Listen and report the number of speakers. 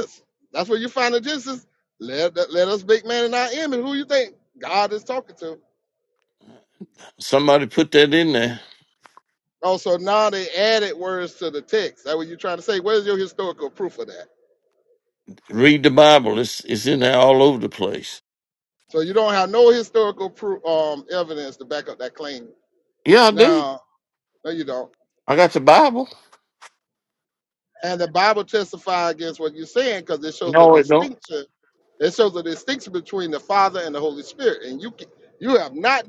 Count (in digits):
2